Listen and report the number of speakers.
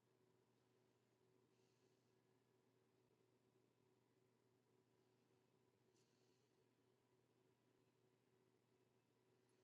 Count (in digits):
0